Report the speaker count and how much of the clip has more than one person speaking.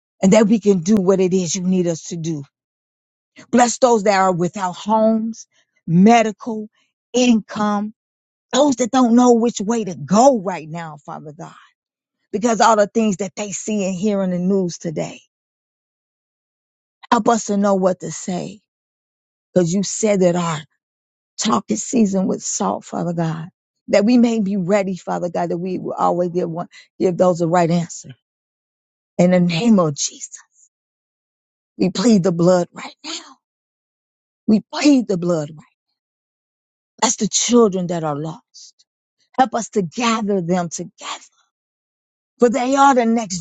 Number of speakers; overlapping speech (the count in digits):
1, no overlap